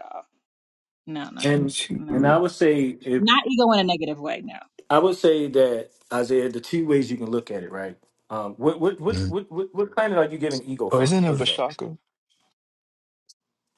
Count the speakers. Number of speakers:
3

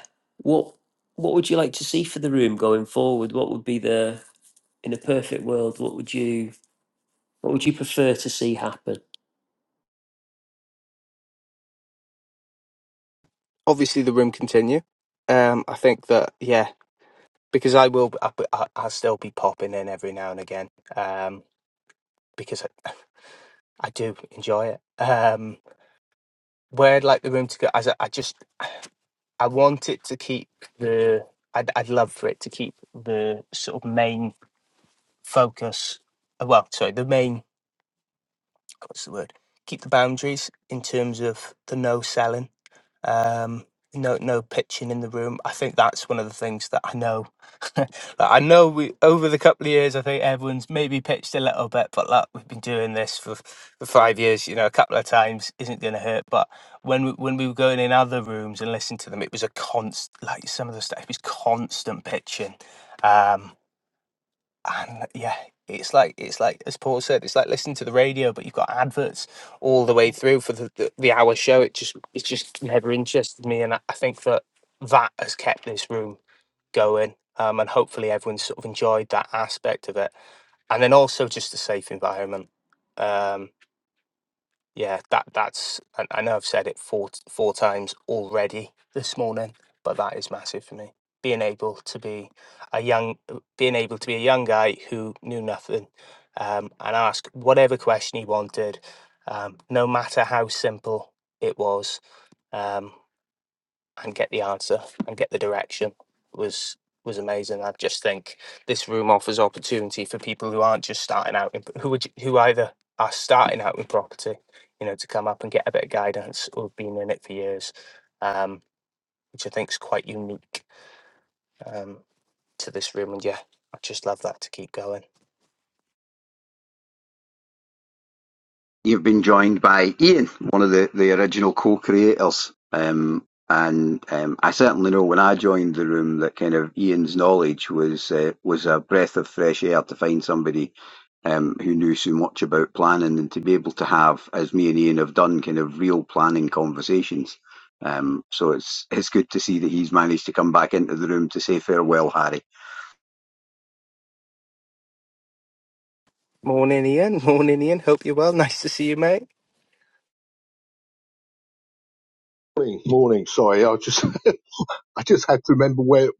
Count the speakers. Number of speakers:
4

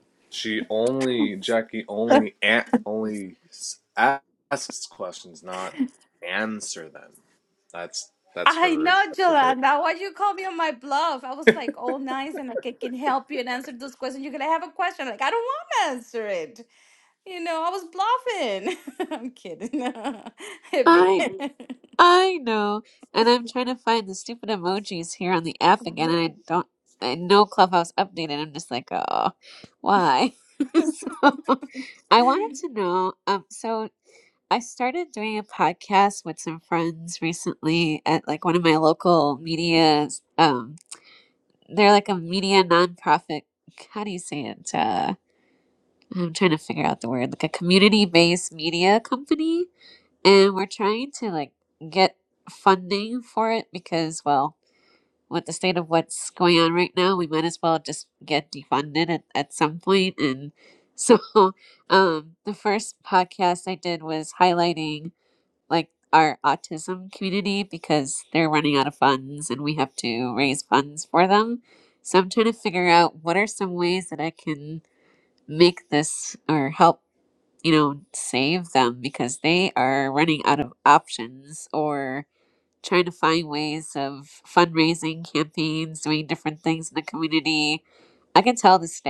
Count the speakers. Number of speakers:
3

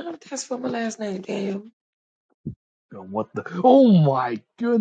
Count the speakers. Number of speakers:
2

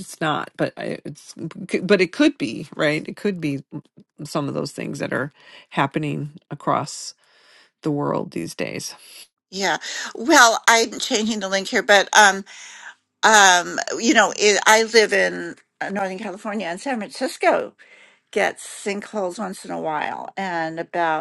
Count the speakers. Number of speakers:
2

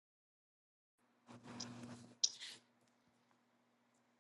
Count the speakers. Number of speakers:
0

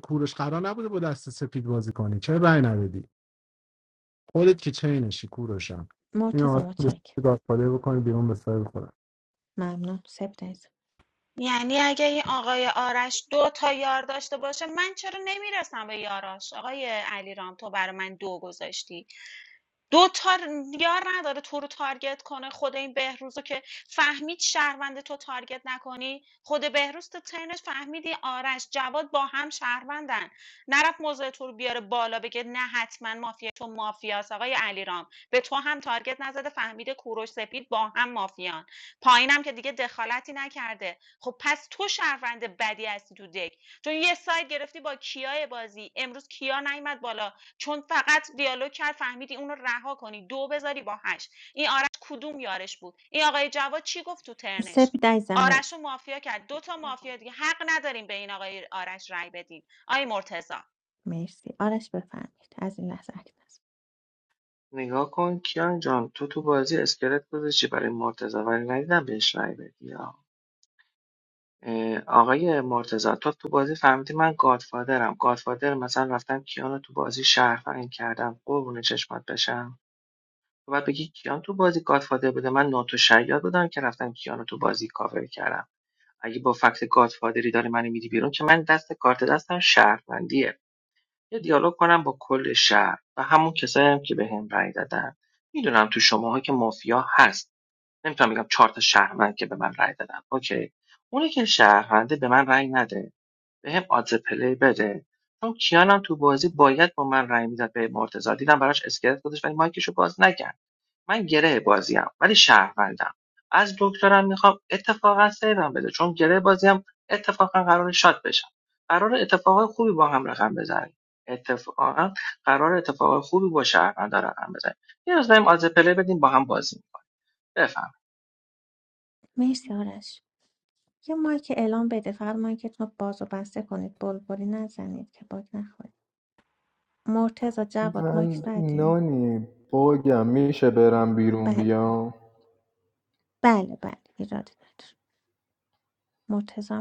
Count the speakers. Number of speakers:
5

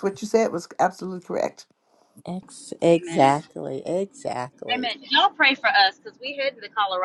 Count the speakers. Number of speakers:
3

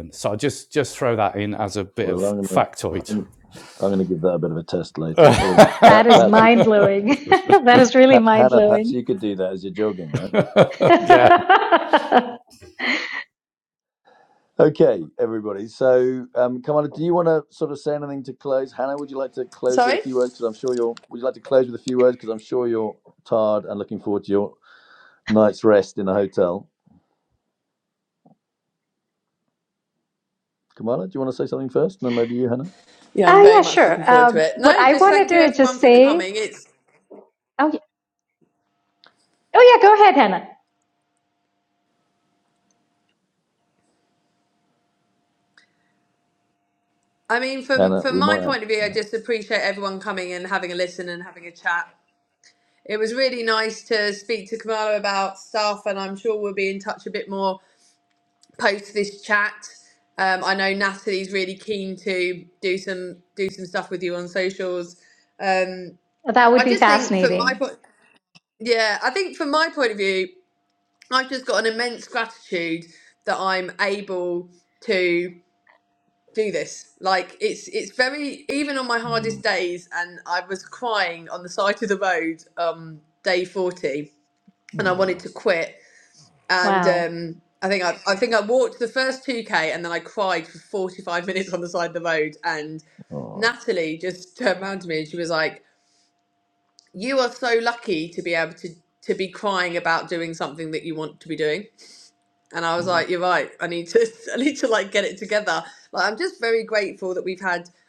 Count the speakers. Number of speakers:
4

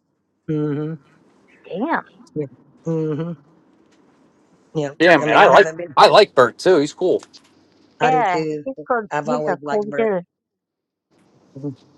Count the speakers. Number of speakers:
3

